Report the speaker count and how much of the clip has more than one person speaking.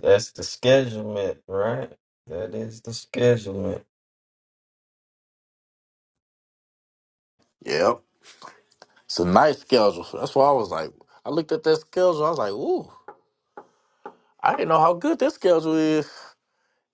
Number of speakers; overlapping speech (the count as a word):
two, no overlap